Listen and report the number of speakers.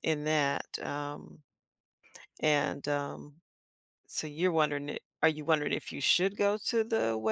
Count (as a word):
one